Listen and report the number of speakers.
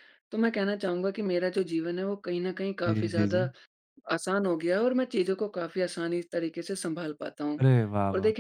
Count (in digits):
2